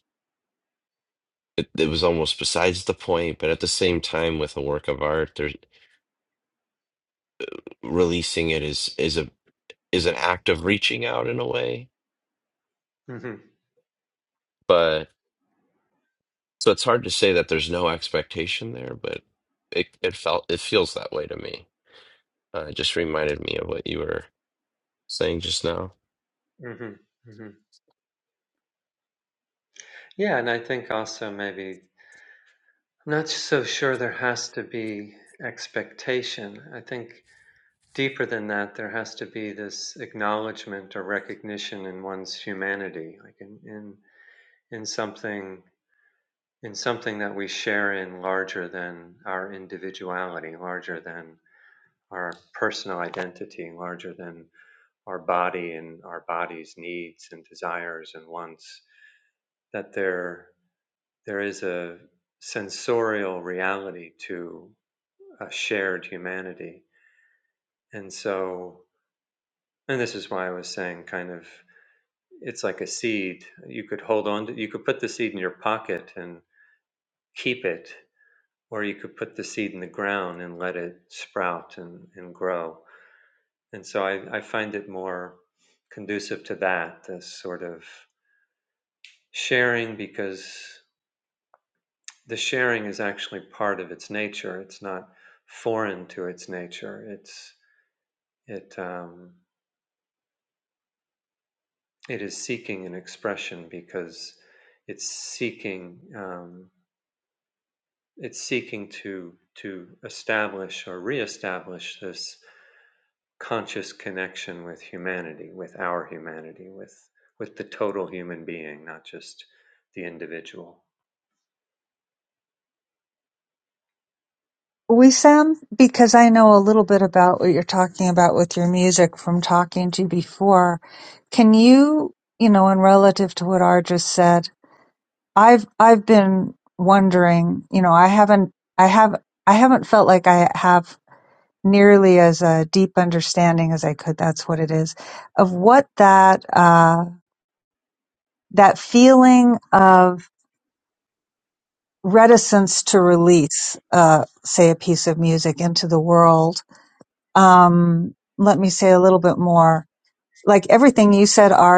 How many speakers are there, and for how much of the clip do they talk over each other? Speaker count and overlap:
three, no overlap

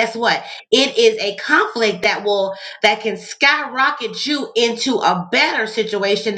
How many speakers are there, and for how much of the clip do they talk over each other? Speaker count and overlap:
one, no overlap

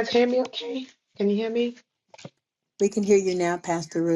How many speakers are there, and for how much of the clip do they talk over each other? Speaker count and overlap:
two, no overlap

